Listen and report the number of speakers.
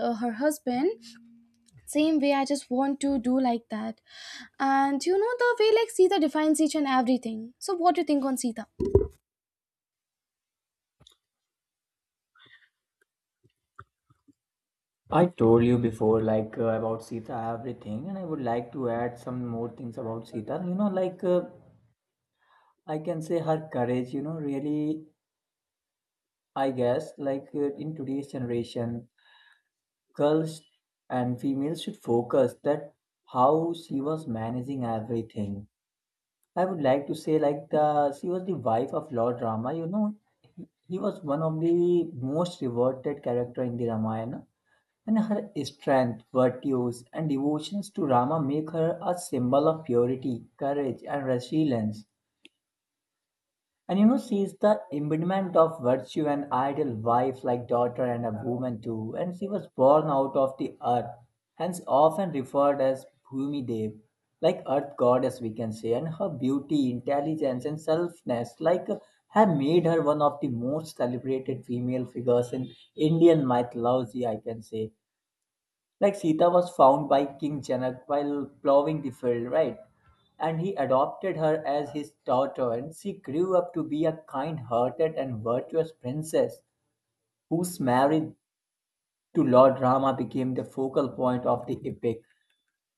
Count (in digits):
2